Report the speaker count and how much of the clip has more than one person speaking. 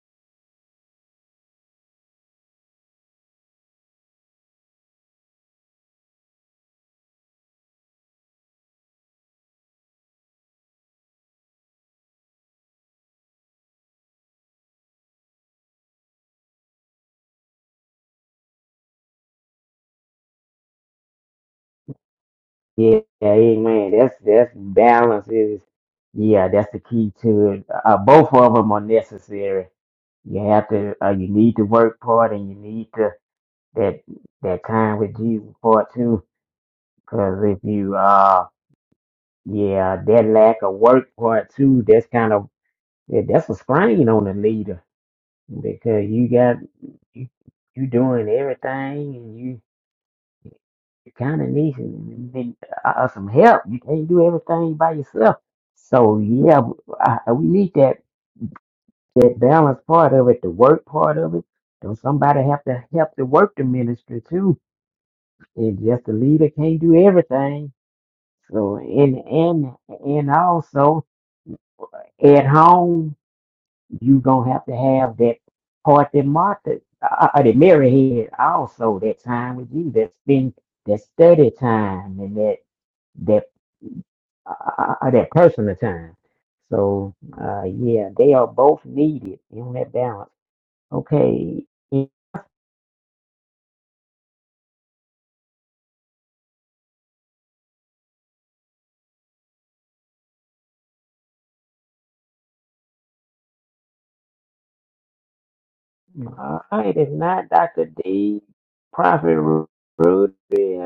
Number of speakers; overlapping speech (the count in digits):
1, no overlap